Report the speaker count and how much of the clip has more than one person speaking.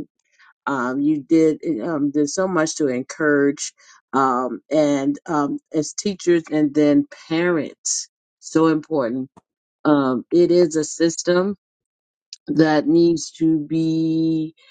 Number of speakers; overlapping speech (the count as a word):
one, no overlap